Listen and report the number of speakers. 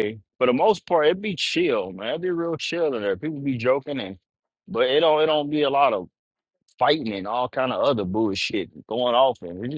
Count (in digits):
1